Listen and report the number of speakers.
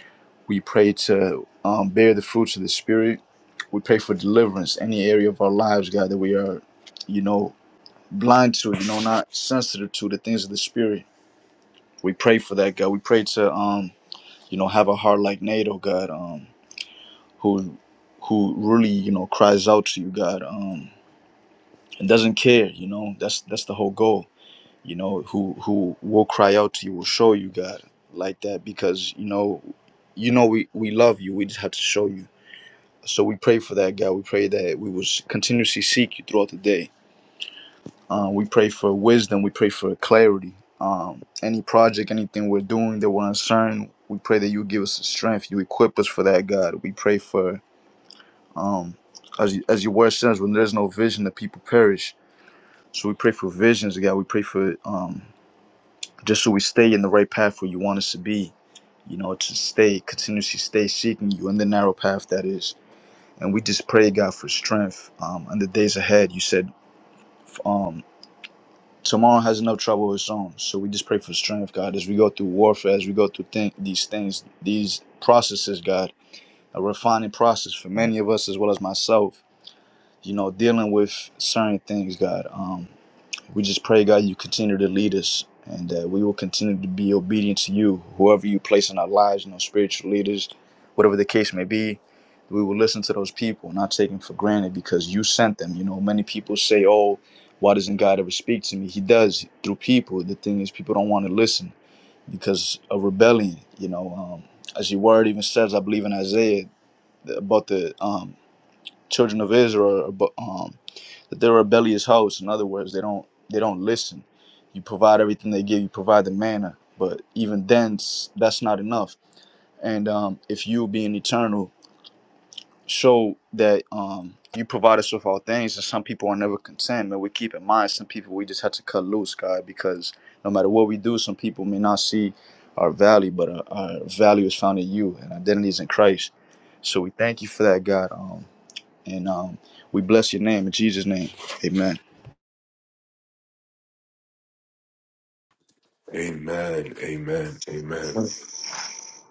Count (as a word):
two